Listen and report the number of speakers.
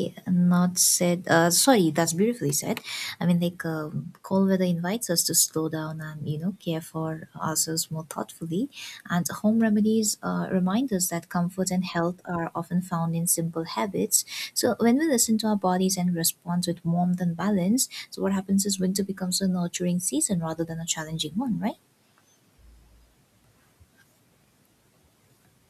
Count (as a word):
one